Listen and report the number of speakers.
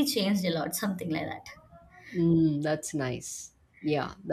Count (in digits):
2